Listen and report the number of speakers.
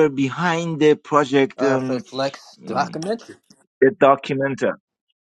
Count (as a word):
two